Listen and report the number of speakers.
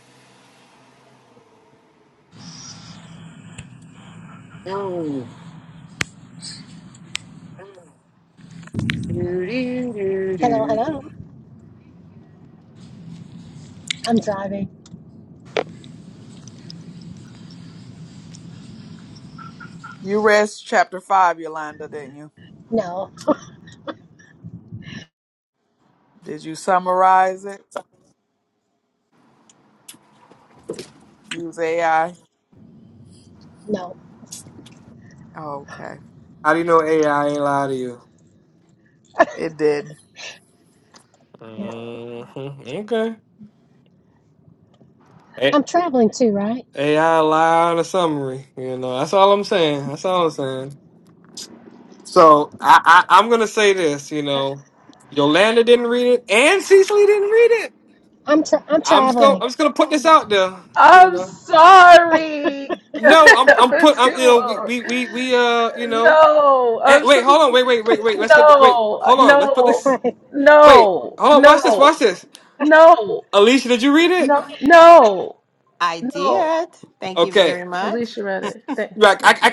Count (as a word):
six